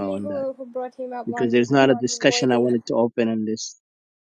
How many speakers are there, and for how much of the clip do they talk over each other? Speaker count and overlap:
two, about 45%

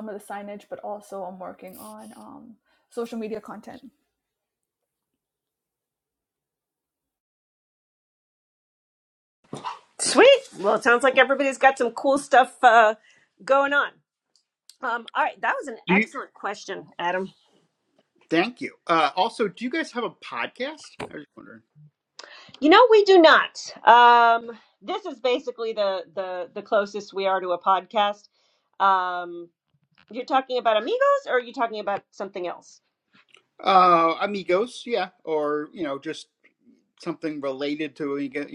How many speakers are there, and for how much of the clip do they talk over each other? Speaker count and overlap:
three, about 1%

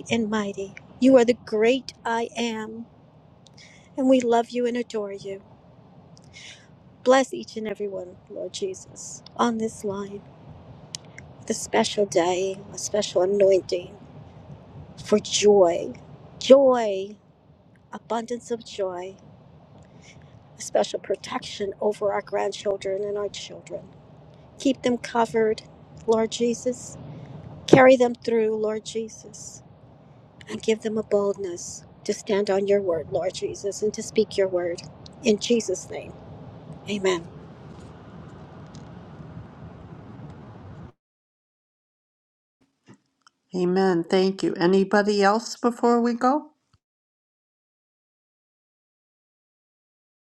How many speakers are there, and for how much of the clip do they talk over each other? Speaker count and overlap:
two, no overlap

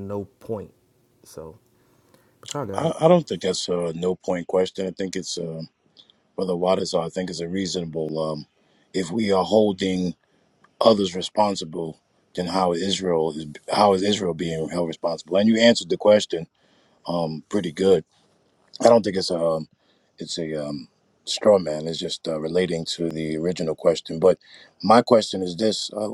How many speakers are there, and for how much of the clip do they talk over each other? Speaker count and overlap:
two, about 1%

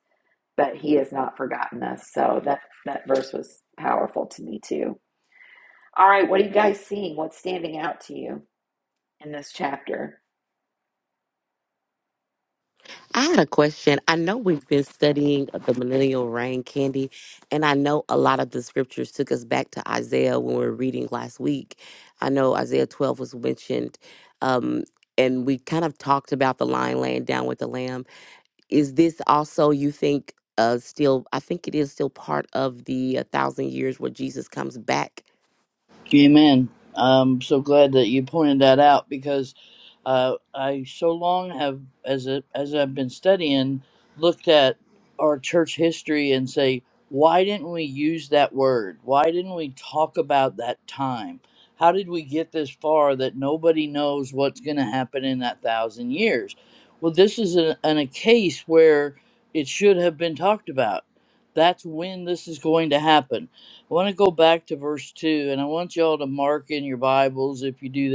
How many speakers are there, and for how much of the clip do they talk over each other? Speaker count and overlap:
three, no overlap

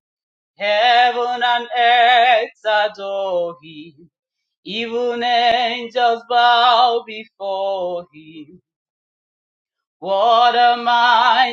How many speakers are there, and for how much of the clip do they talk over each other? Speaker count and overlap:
one, no overlap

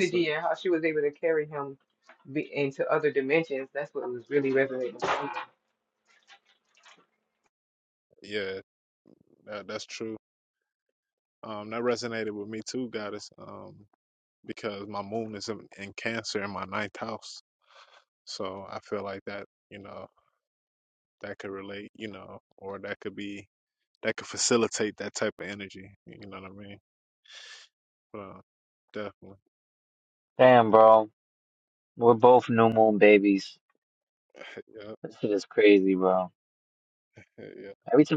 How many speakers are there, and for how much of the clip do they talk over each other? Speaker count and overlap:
three, about 1%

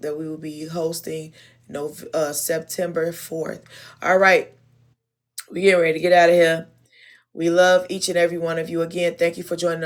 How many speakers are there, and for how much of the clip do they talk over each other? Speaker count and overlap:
one, no overlap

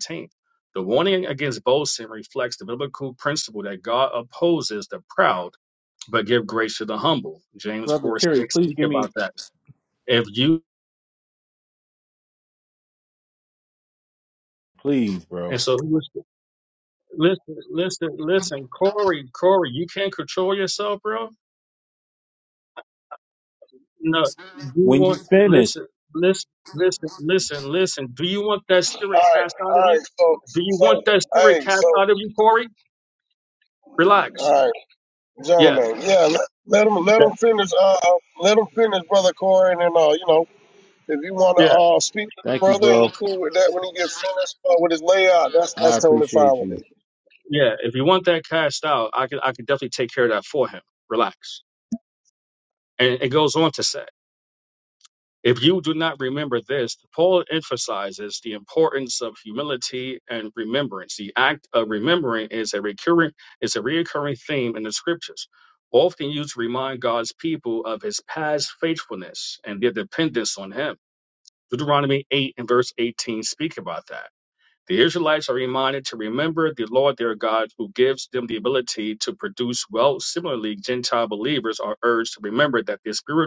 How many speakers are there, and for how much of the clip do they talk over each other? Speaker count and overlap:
three, about 8%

